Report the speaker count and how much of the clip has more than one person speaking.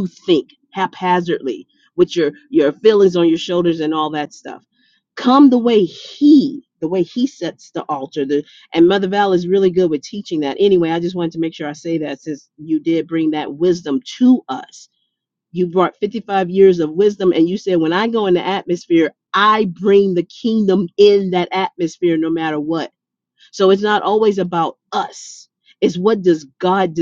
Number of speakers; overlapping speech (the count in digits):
1, no overlap